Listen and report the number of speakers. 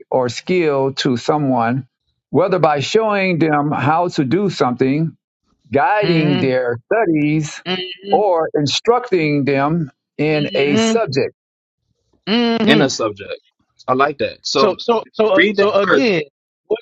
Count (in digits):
3